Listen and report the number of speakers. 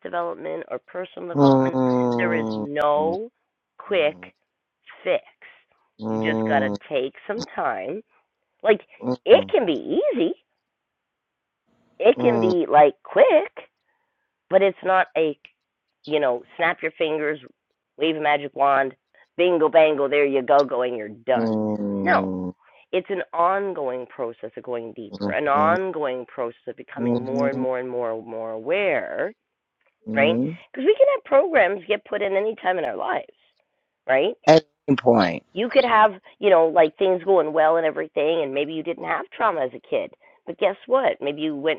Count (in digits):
2